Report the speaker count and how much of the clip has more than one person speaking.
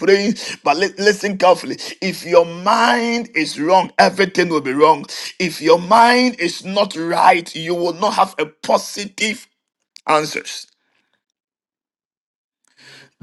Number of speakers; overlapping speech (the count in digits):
1, no overlap